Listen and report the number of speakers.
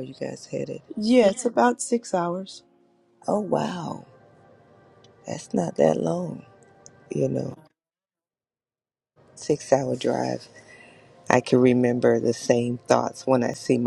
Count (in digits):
2